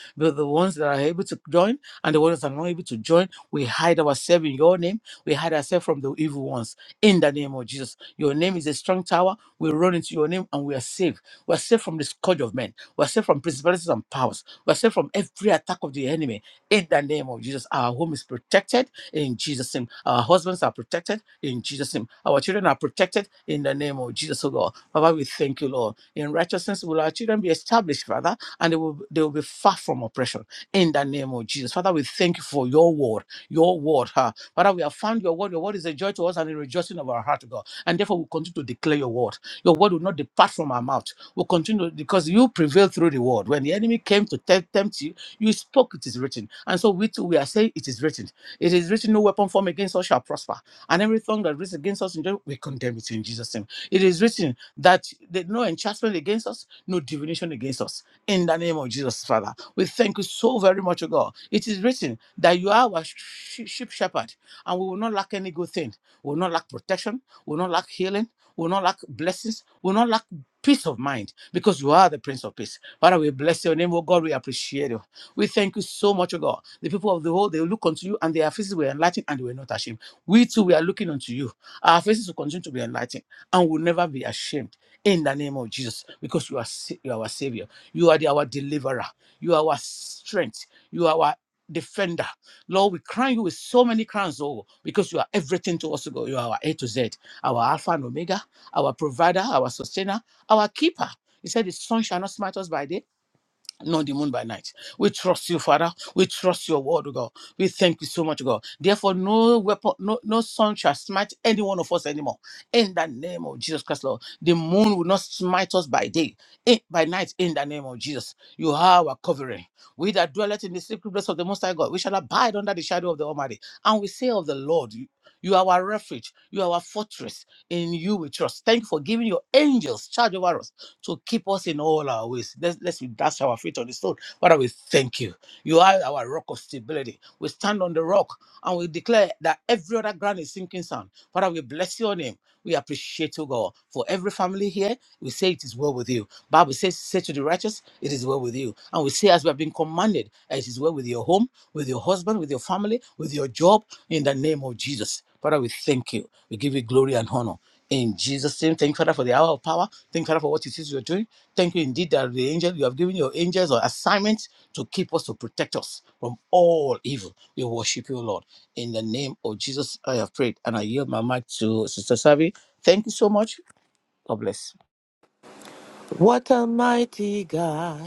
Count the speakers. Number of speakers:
2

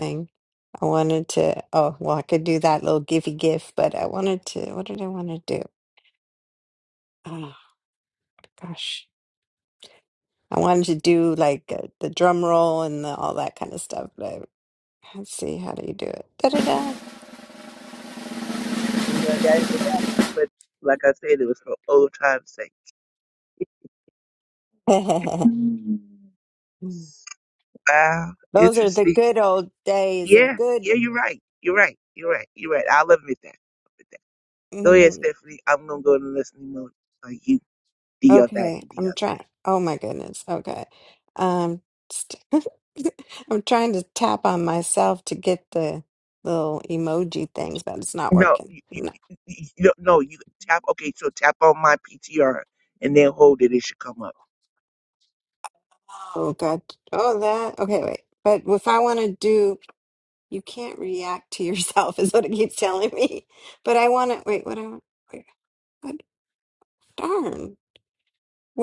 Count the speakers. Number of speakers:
2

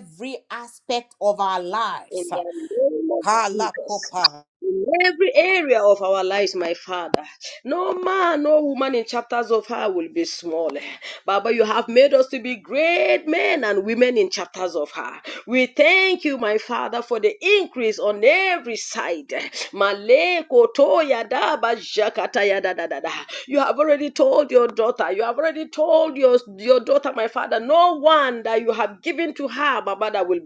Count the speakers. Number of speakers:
2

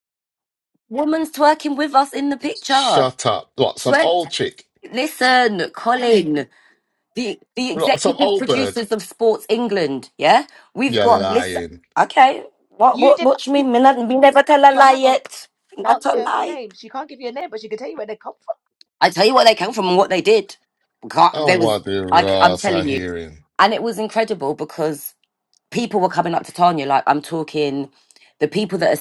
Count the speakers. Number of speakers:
3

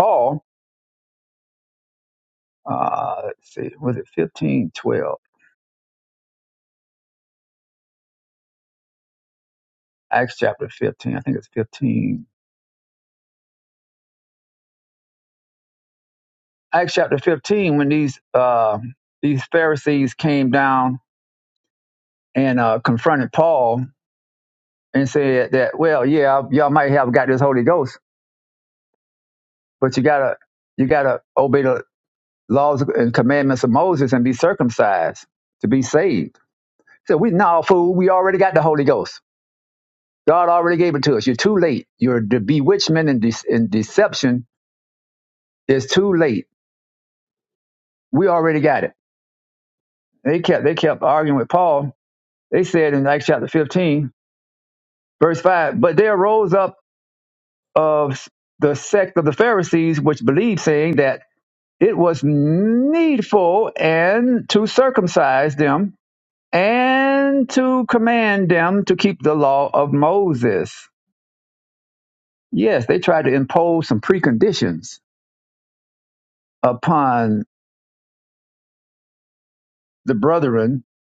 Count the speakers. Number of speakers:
1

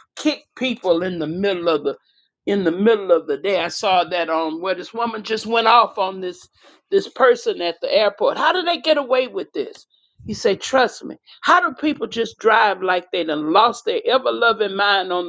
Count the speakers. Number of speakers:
1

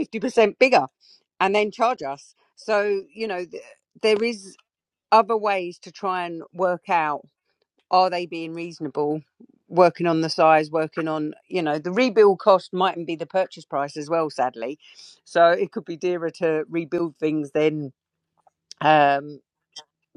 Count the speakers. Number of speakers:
1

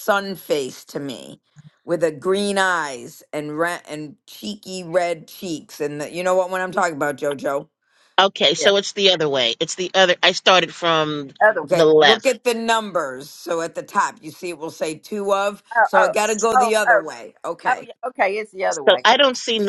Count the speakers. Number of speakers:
3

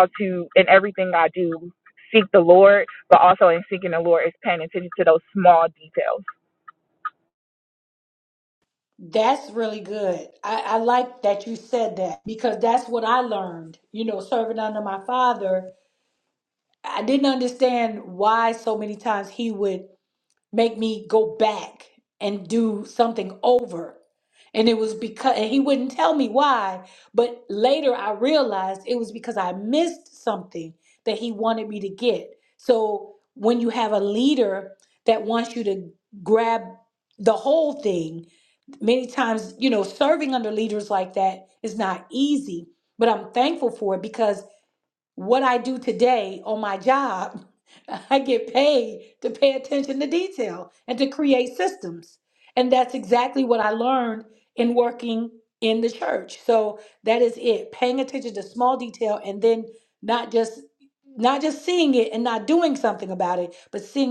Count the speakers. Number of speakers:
2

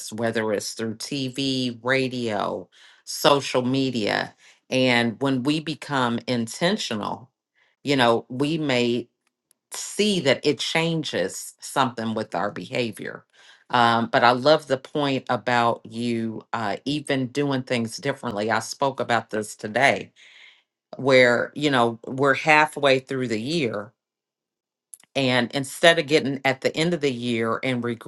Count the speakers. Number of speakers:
1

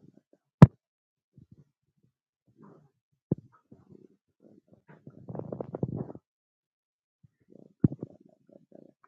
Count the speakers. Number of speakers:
0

